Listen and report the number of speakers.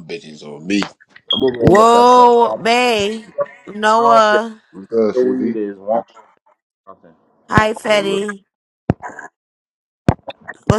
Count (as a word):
three